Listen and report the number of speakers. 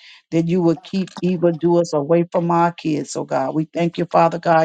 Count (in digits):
1